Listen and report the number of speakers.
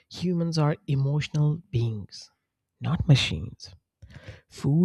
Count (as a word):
one